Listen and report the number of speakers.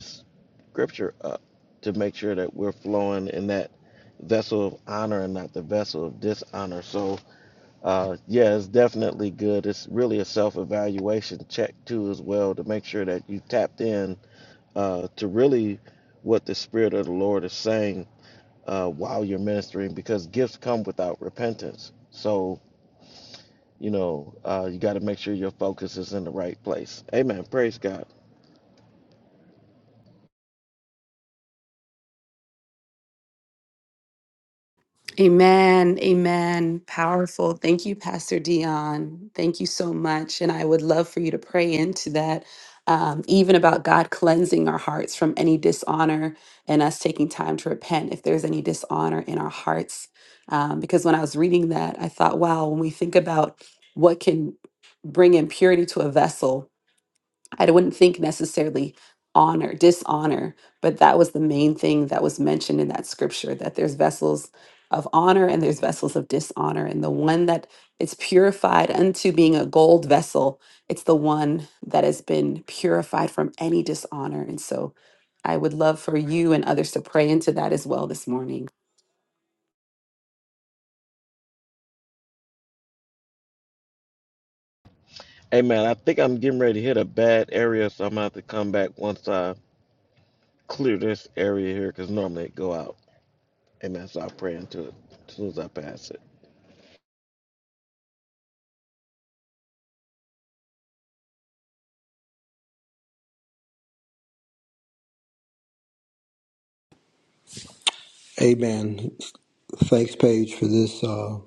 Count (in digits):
3